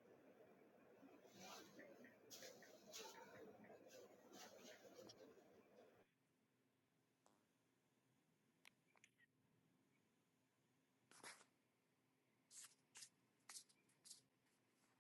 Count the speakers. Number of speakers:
zero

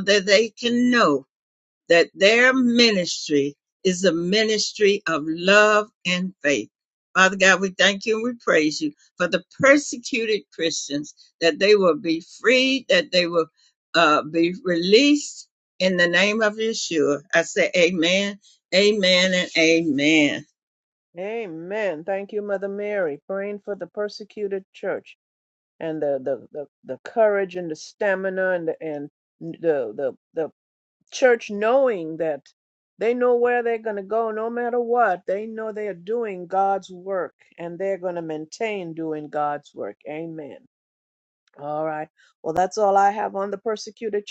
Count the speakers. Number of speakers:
two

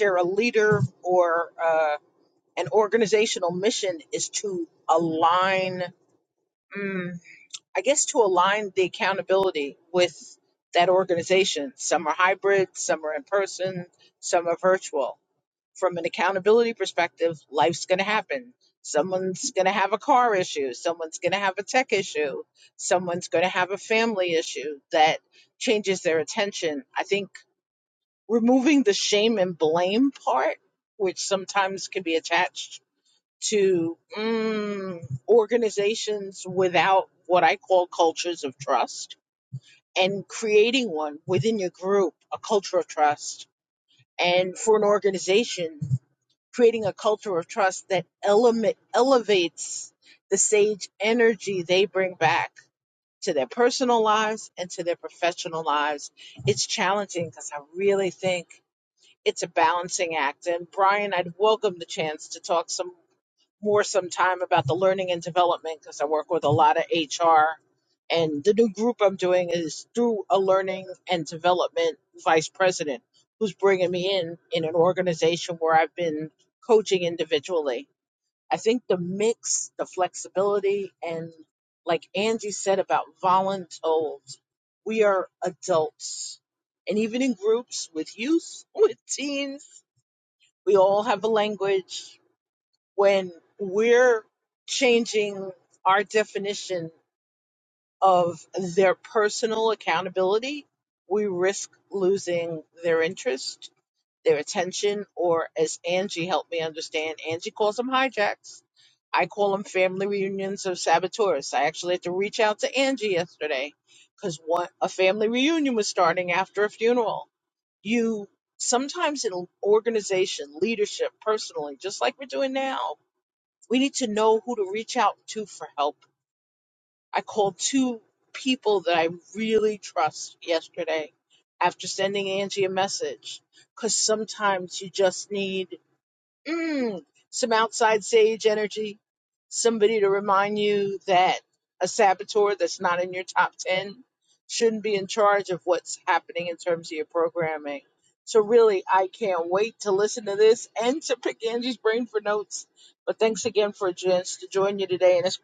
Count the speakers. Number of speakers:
one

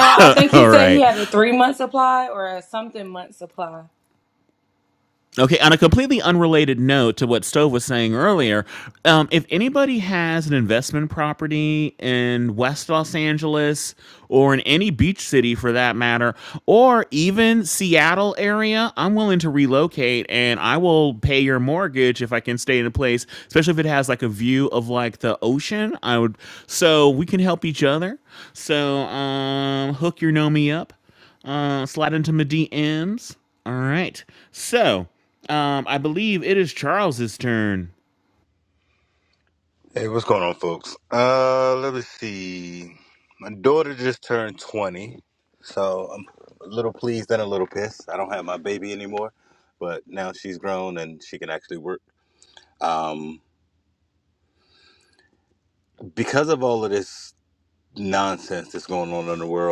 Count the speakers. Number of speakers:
three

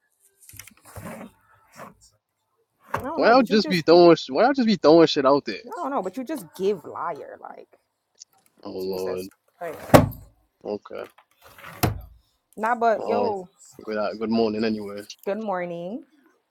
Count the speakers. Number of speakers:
two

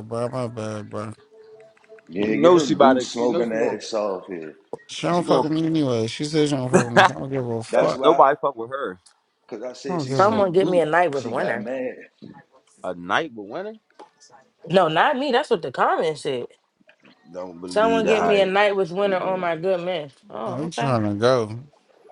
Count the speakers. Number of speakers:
four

